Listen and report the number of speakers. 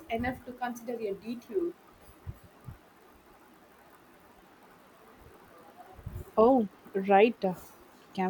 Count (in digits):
2